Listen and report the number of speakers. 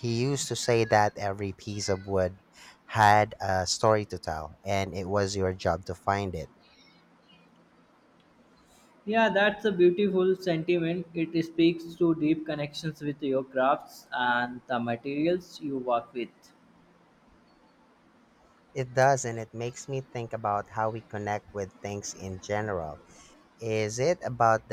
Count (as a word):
two